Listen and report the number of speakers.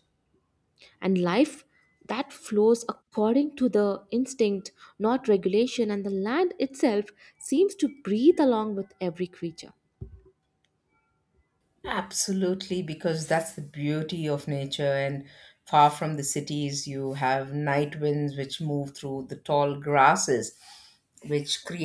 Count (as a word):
two